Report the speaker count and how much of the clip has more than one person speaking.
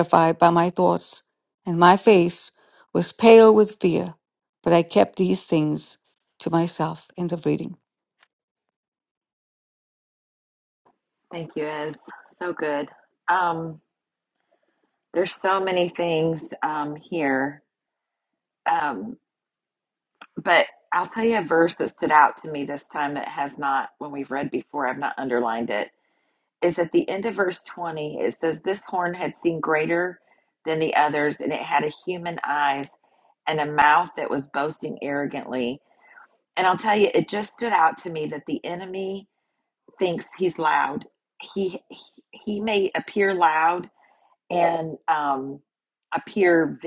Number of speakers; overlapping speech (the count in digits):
2, no overlap